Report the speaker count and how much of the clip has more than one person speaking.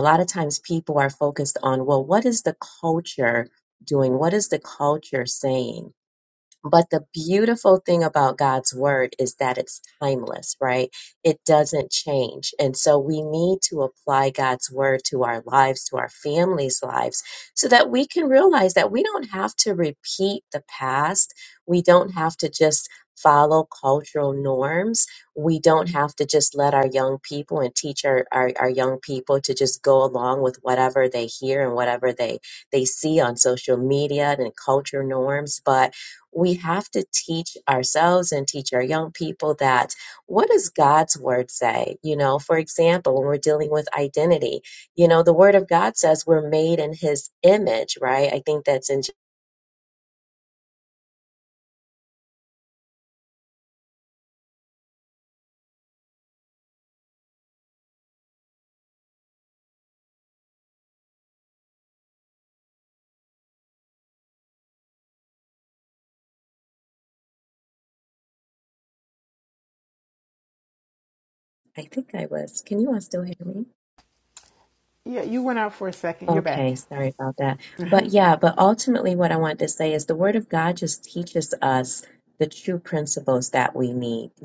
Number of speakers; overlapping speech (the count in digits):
2, about 1%